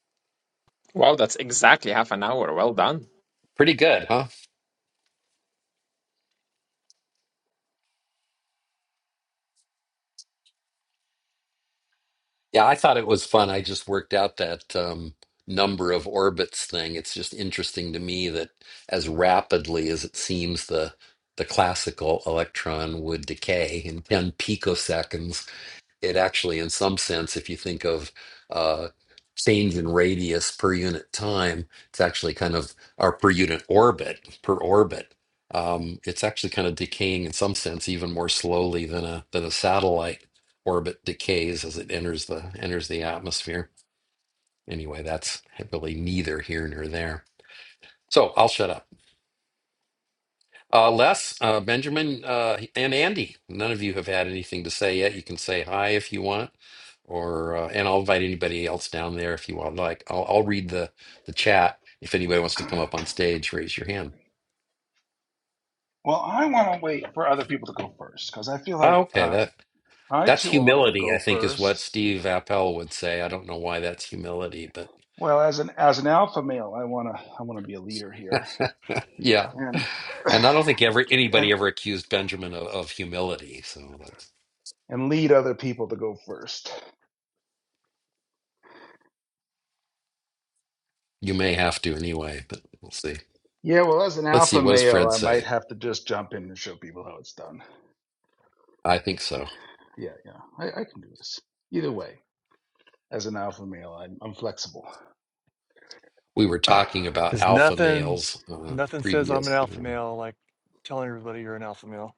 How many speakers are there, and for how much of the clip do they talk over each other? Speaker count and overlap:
4, about 5%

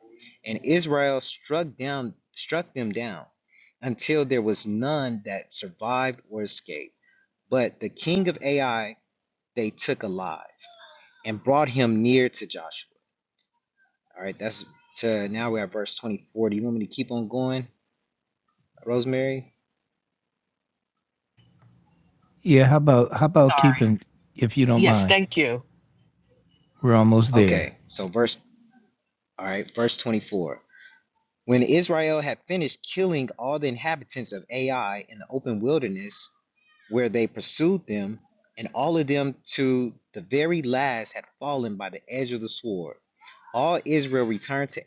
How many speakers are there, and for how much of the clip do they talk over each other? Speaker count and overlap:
3, about 2%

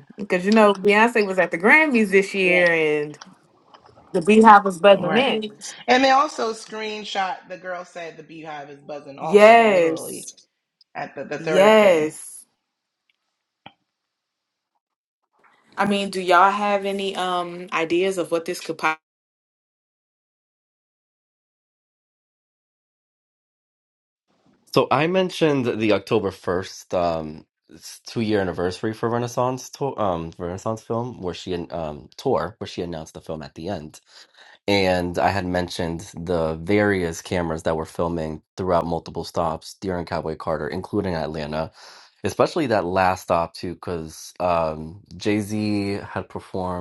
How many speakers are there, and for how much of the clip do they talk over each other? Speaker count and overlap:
3, about 5%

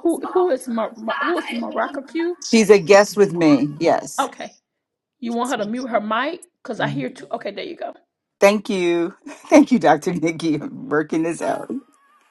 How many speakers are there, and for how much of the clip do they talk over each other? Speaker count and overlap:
2, about 2%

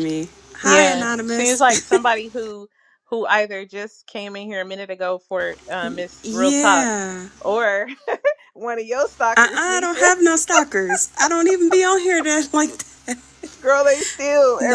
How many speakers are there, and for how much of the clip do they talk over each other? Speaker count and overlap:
2, about 17%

